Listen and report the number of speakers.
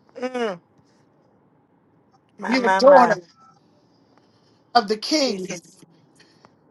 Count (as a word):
two